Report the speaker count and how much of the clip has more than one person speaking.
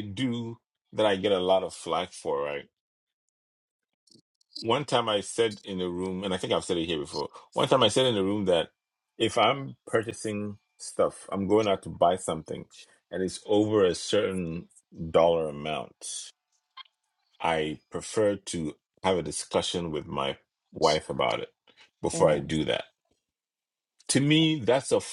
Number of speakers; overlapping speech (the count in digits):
1, no overlap